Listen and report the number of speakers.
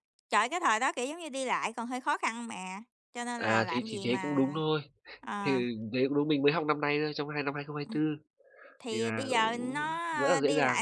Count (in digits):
2